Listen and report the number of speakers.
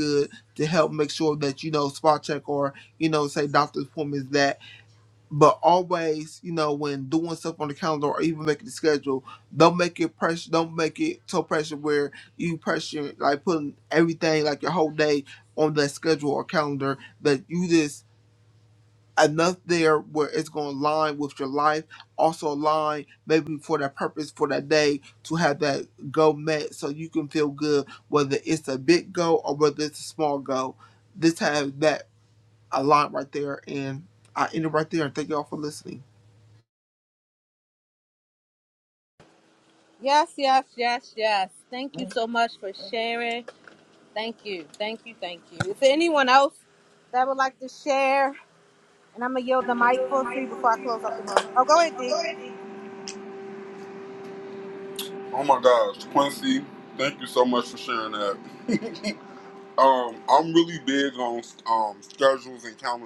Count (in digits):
3